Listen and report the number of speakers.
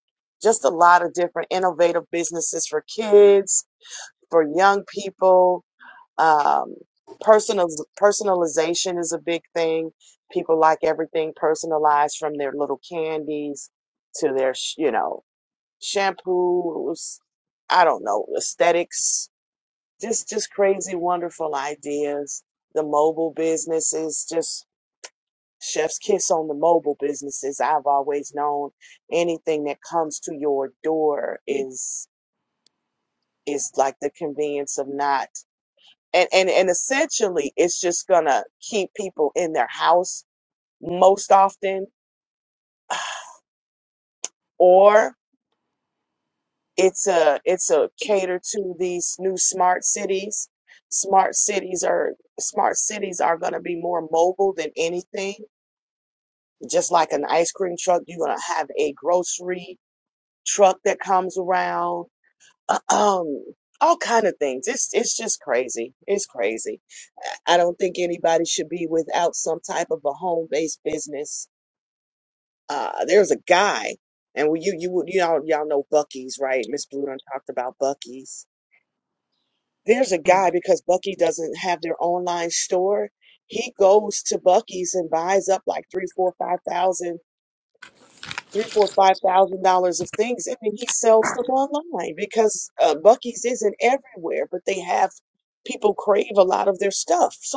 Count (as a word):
one